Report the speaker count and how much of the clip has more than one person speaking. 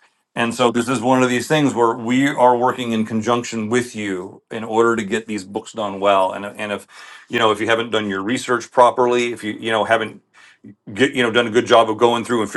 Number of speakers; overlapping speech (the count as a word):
one, no overlap